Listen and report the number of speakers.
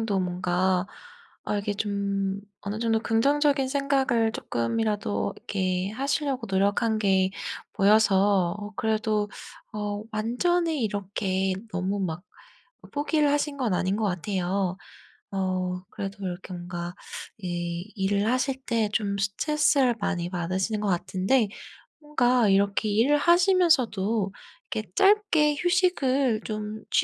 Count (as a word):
one